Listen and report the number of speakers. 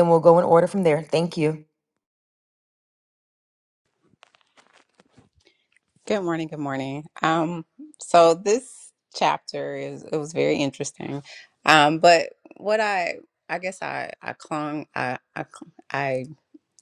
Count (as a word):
two